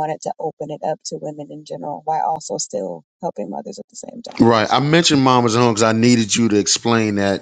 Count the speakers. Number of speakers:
2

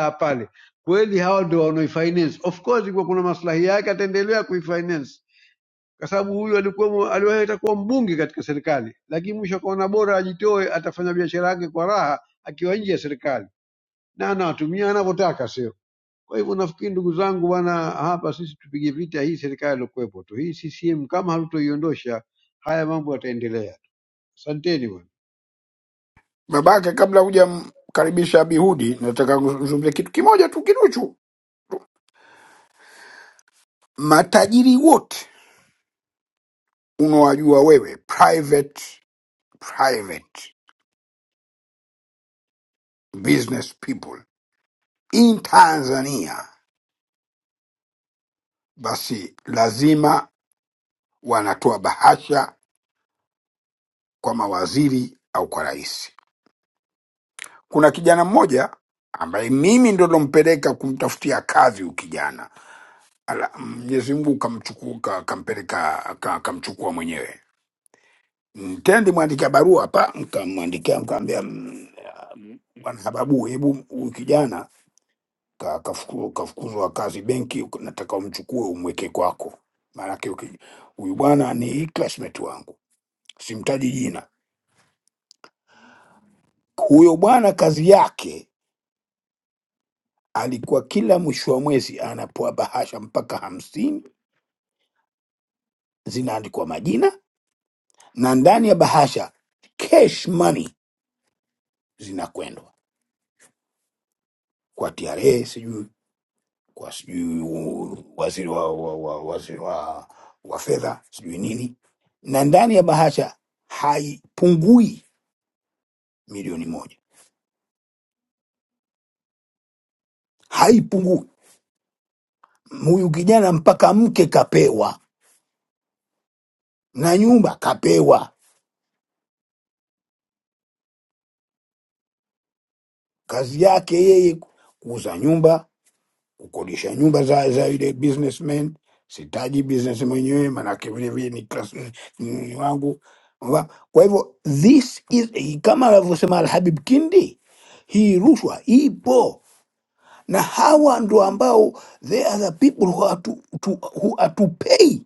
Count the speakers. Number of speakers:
2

